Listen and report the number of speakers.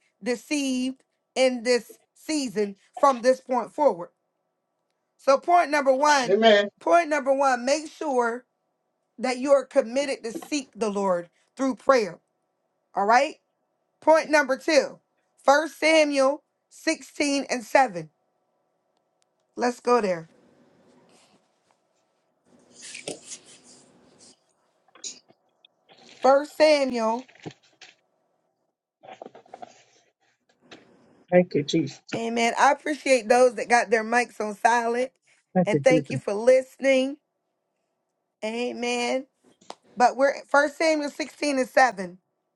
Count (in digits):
2